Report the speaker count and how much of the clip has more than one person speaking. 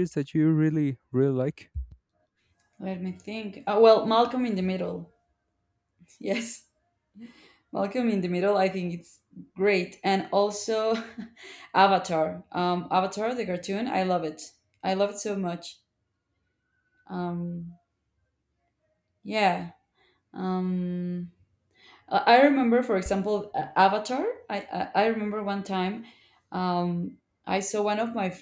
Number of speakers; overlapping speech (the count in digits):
2, no overlap